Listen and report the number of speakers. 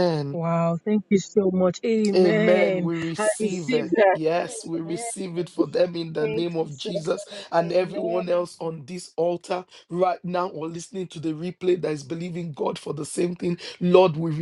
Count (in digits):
2